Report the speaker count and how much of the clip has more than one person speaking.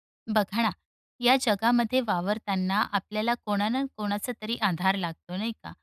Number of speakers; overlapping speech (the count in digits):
1, no overlap